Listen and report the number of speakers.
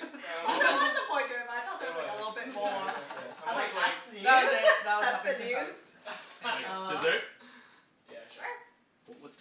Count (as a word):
four